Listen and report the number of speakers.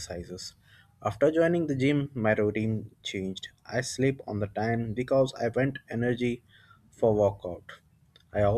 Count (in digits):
1